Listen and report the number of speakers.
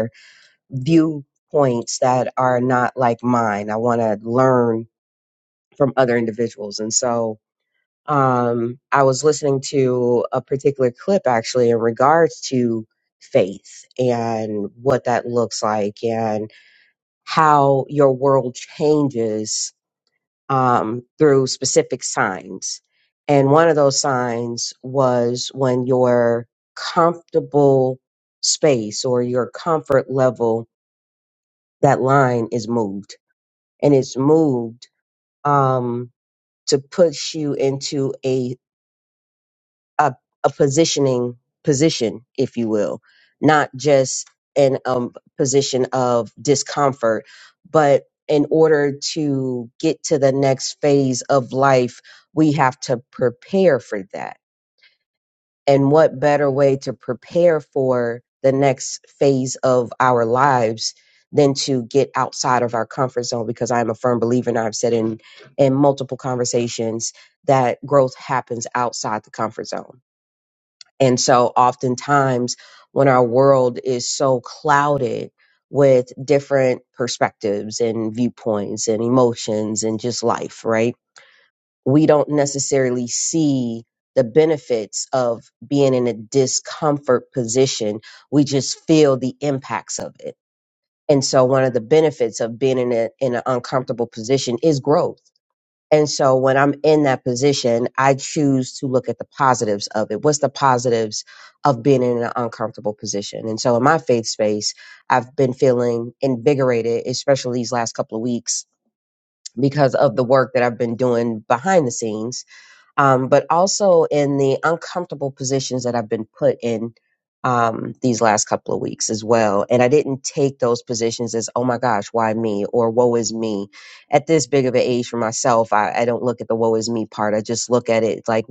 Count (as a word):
one